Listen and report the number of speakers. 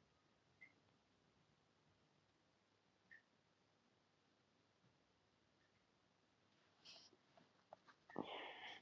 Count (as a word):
zero